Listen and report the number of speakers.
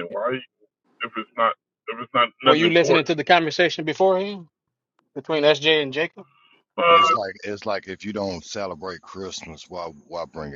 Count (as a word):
three